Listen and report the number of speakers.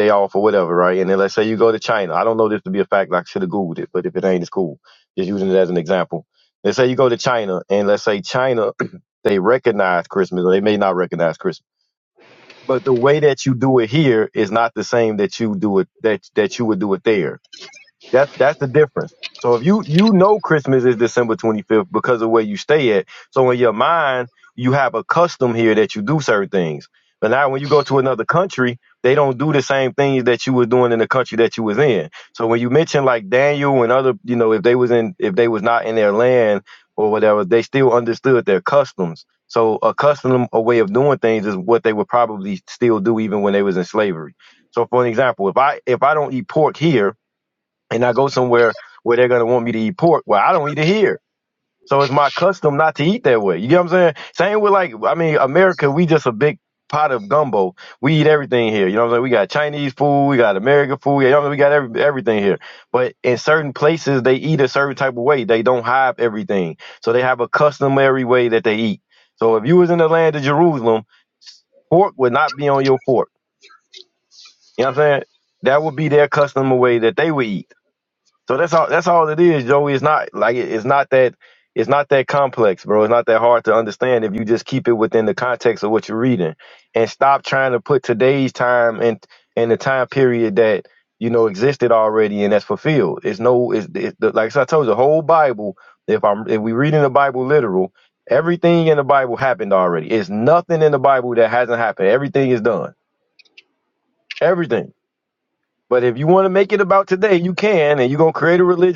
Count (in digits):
1